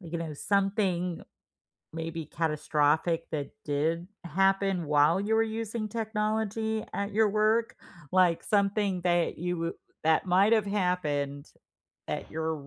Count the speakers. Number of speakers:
one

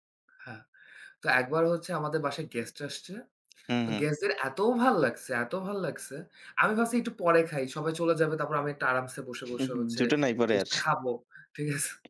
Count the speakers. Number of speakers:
two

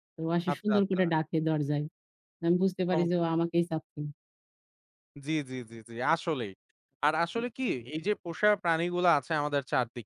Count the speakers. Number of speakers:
two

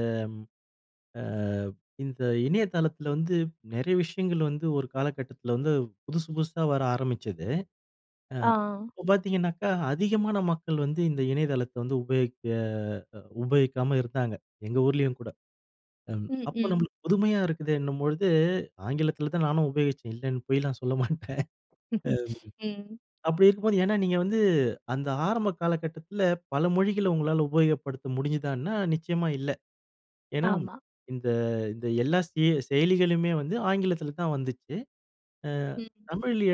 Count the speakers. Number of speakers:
two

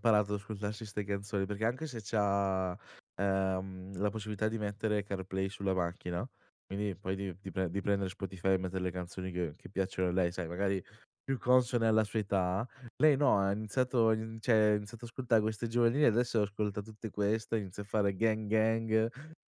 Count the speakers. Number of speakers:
one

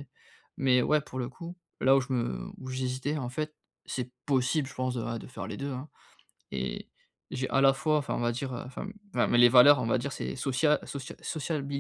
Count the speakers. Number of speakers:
one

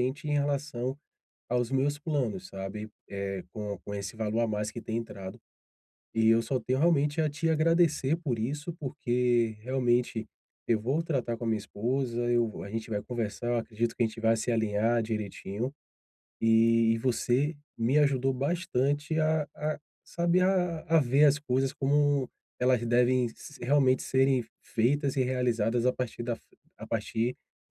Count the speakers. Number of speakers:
one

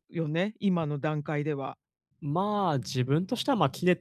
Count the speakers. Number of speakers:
two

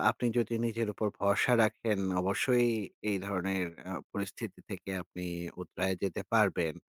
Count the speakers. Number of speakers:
one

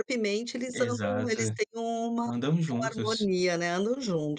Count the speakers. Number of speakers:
two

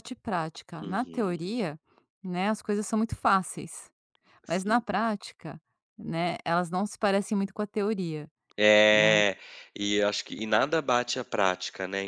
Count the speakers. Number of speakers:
two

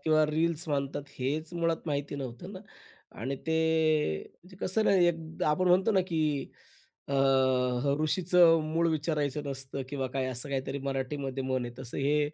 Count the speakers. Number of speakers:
one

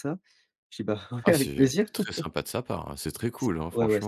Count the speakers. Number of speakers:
two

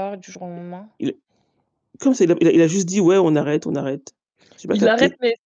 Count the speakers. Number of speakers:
two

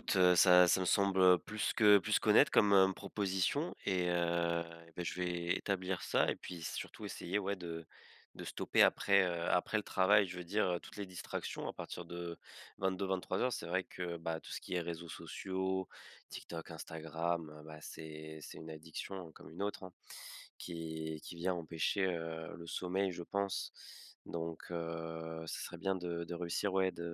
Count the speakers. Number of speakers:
one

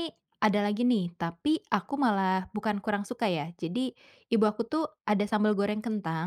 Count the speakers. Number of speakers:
one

